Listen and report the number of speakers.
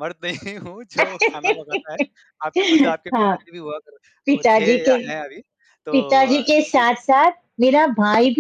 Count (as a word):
two